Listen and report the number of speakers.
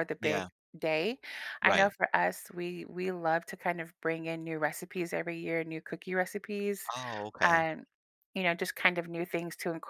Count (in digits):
2